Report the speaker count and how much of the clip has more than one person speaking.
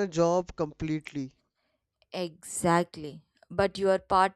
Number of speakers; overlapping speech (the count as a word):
two, no overlap